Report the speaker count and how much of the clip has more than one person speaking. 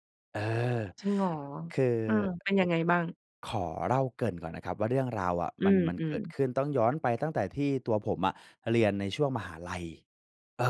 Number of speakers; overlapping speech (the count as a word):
two, about 3%